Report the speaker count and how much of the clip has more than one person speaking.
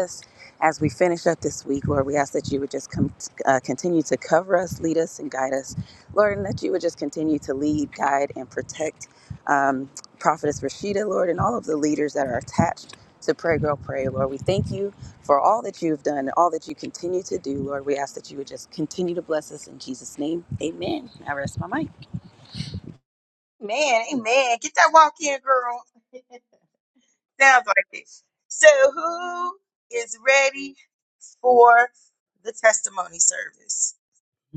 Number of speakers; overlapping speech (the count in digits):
2, no overlap